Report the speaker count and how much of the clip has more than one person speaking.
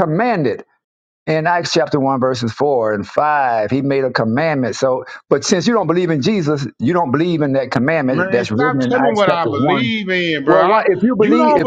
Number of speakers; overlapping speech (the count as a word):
two, about 23%